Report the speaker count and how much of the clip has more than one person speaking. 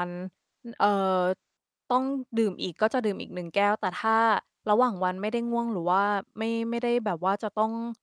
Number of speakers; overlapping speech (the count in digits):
1, no overlap